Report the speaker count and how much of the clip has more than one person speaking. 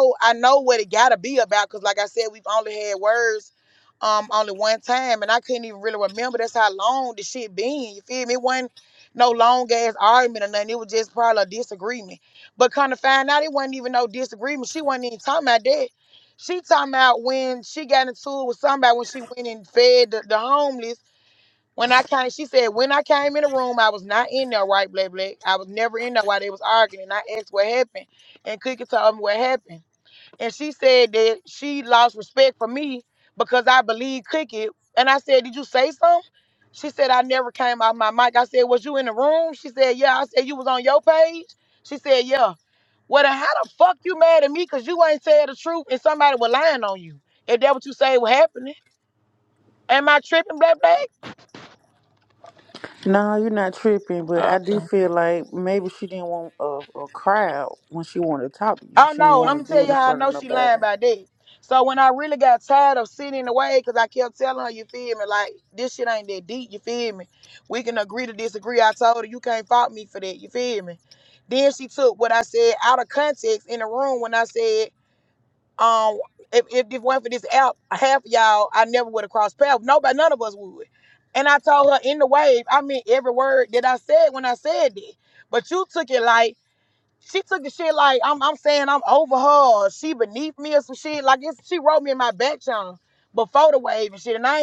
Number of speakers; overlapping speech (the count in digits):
2, about 2%